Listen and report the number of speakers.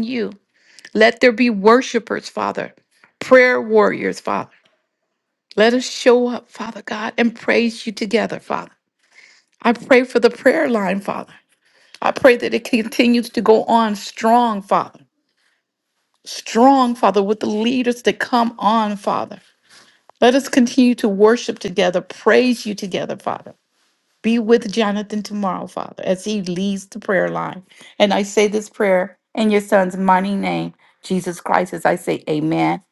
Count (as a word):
one